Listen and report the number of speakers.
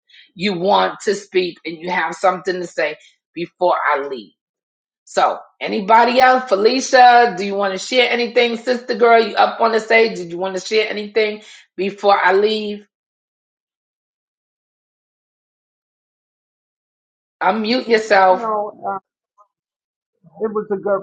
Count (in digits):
2